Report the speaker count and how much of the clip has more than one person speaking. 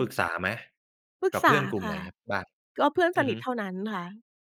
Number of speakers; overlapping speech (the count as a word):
two, about 21%